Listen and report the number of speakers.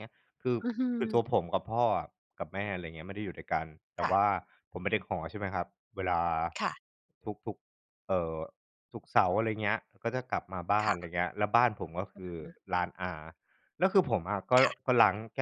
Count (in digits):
2